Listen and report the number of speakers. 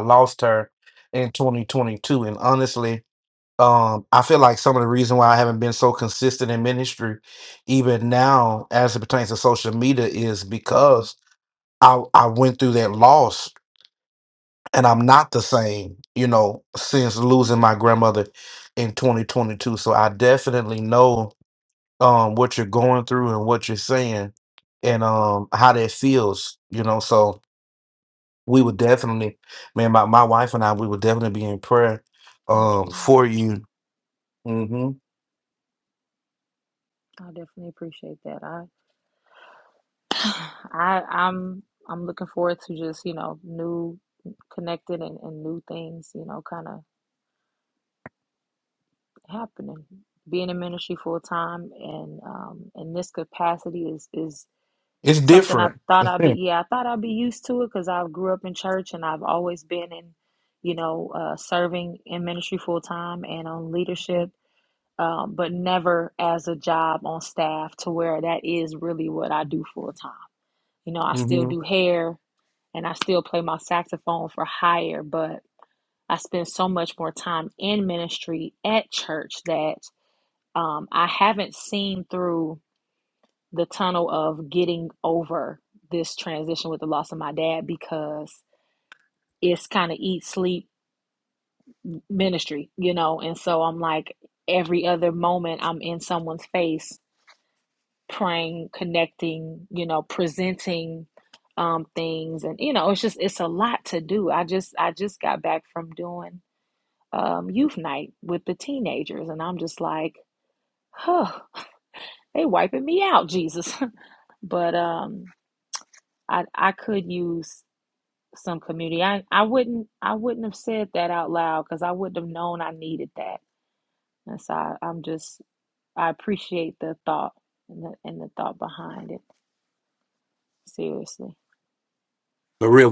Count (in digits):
2